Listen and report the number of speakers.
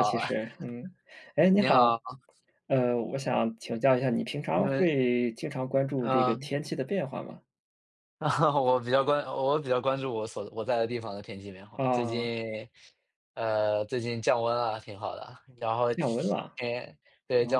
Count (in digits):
2